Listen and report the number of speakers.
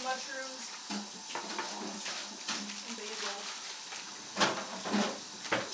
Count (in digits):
1